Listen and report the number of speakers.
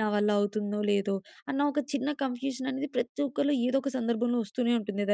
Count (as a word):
one